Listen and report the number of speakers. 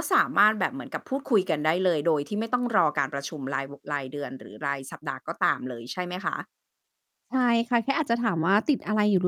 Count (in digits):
2